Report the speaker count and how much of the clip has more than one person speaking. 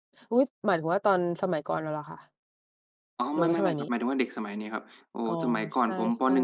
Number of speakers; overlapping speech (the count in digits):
2, about 11%